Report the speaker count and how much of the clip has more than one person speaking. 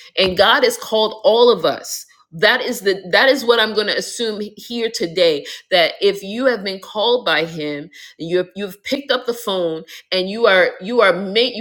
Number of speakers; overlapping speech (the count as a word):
one, no overlap